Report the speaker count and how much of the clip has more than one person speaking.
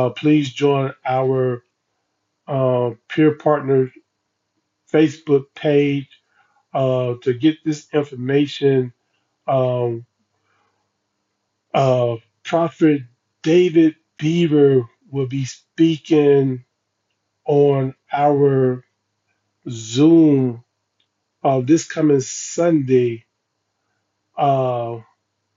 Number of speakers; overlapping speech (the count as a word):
one, no overlap